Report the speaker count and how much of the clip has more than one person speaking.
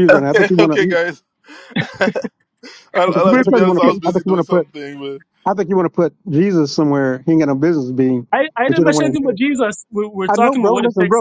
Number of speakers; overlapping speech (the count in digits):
3, about 36%